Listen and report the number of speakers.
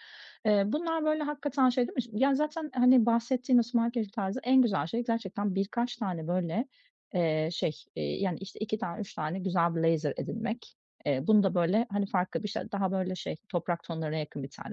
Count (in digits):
1